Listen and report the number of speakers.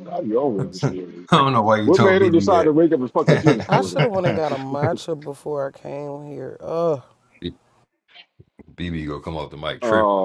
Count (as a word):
three